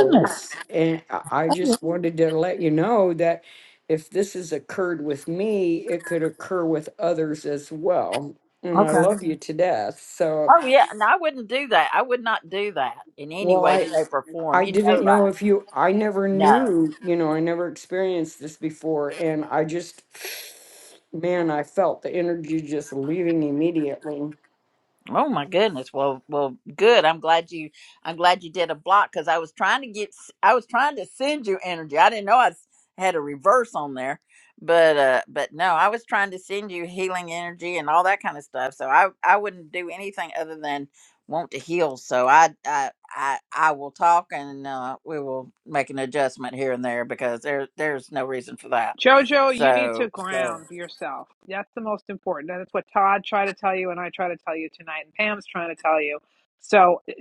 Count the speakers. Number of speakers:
3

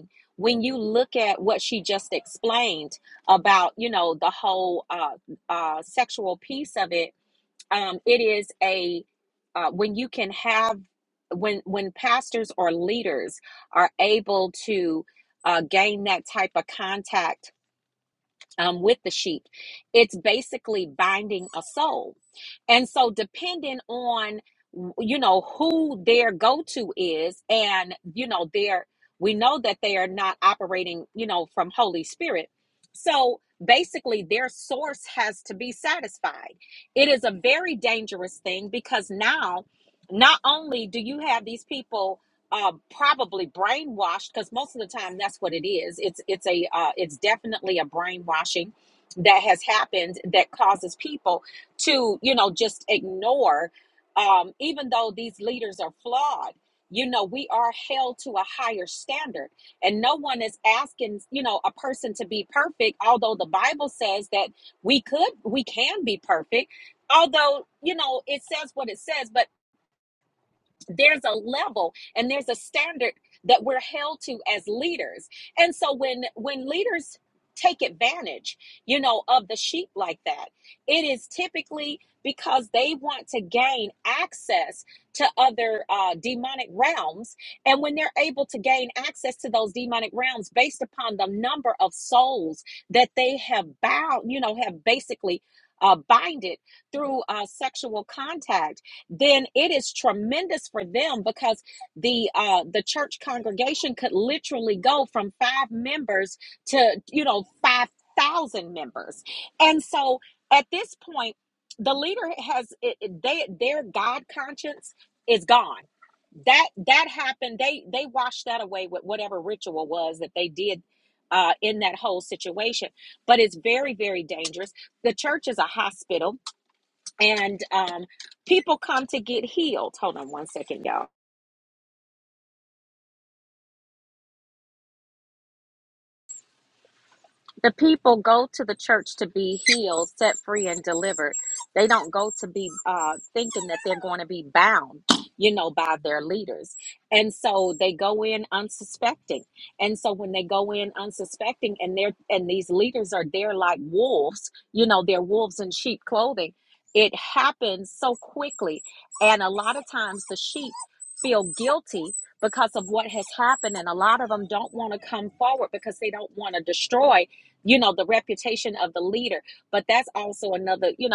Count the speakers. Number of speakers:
1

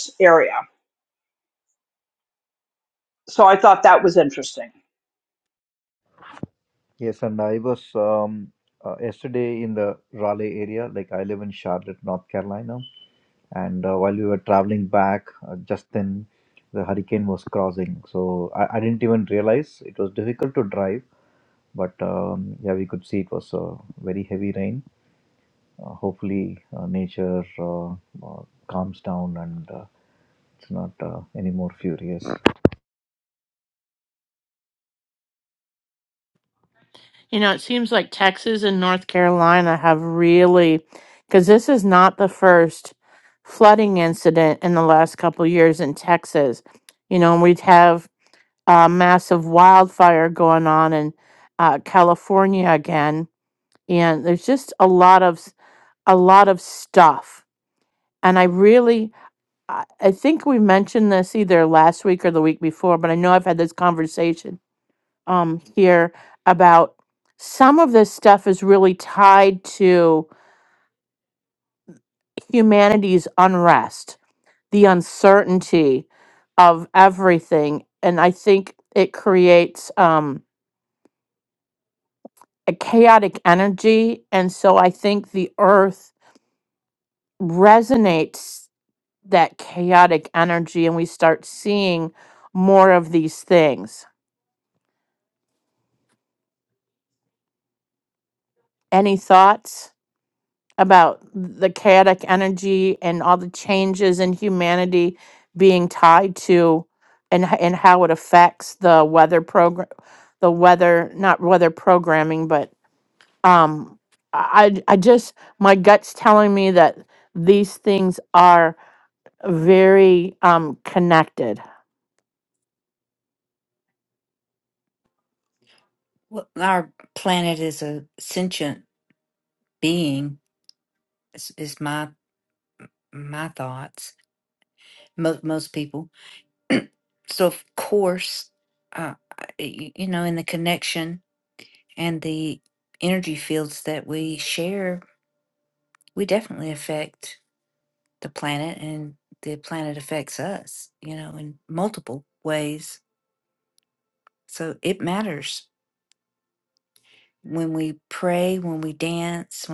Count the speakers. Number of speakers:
4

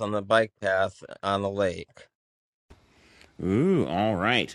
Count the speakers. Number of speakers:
2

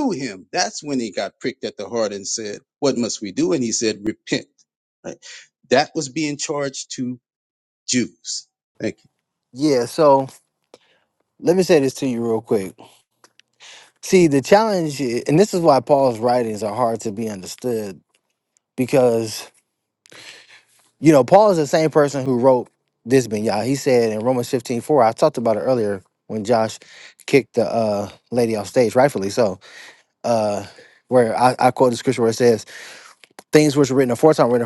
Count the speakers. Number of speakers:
2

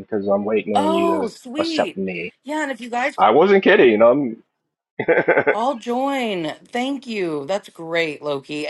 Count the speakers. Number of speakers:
2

